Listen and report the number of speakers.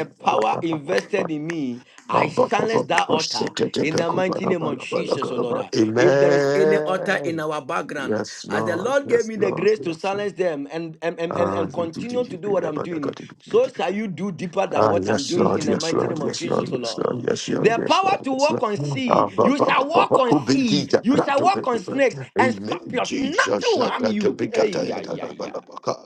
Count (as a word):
two